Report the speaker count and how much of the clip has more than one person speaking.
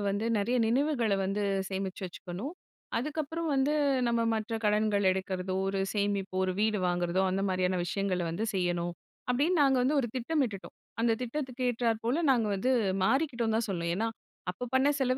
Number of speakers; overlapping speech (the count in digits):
1, no overlap